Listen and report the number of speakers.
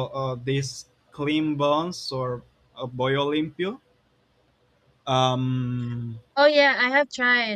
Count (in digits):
2